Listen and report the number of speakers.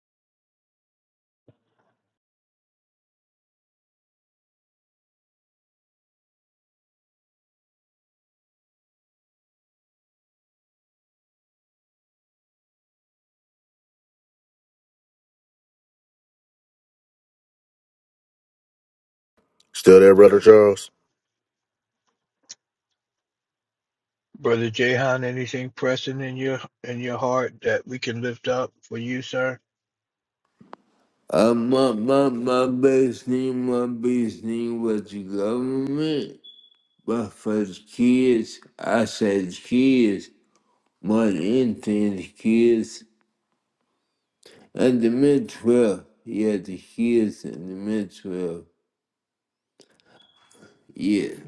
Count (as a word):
three